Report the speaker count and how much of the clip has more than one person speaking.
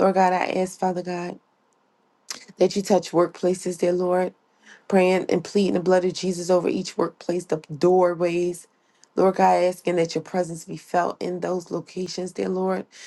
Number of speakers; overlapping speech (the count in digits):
1, no overlap